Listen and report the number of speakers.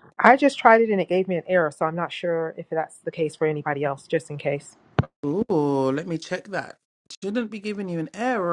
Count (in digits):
2